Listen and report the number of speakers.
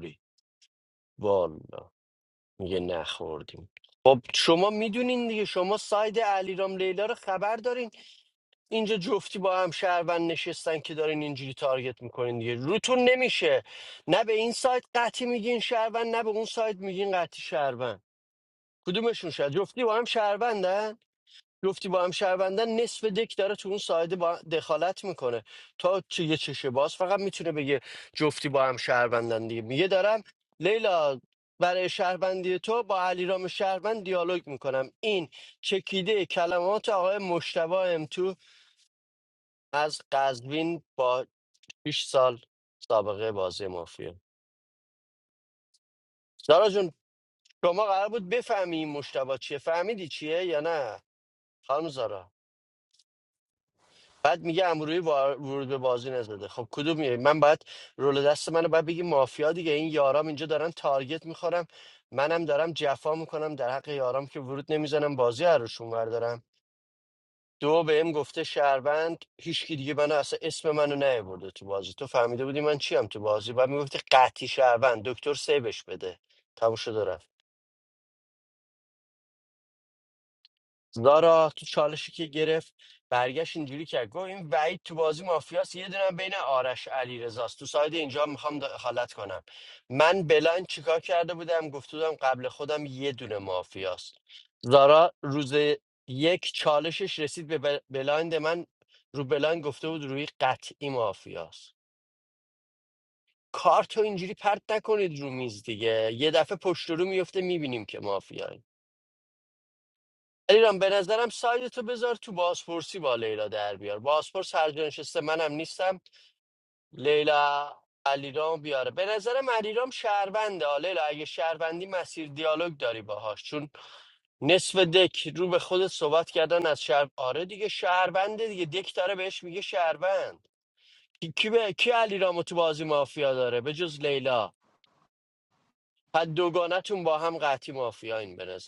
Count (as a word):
one